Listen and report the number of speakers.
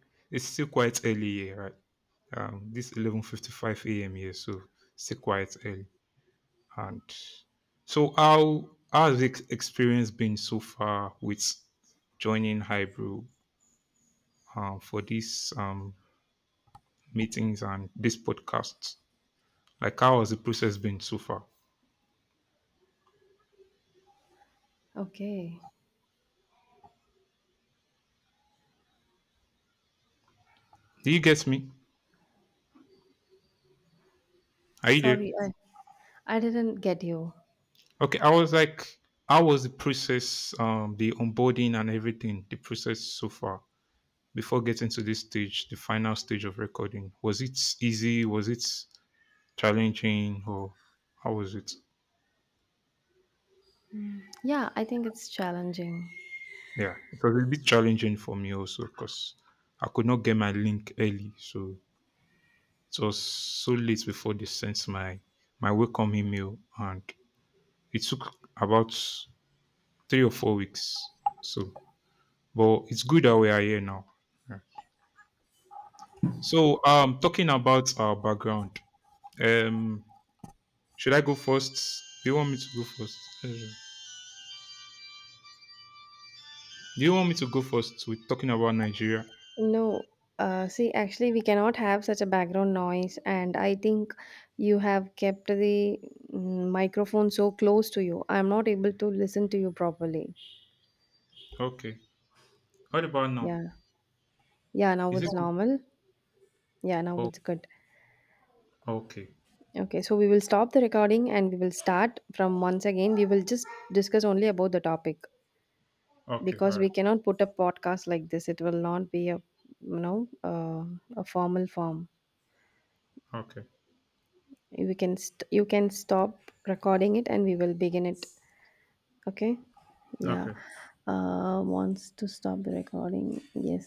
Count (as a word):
two